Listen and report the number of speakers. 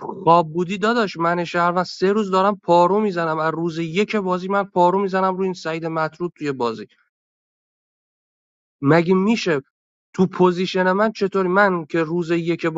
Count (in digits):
1